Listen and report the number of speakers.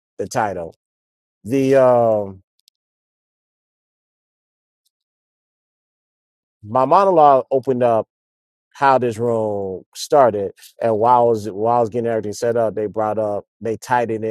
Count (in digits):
1